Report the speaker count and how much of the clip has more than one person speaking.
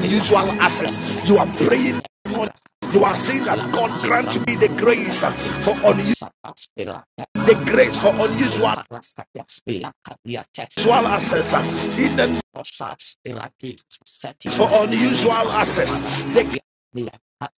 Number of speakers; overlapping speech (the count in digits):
2, about 50%